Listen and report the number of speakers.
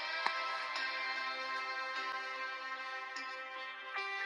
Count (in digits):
0